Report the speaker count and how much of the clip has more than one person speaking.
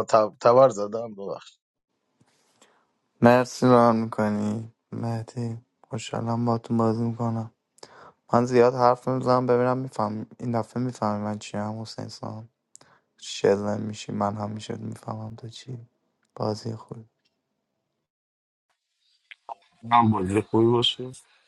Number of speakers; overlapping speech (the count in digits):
3, no overlap